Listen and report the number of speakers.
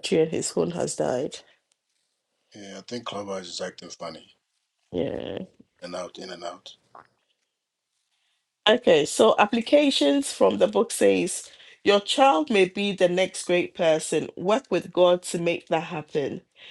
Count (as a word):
two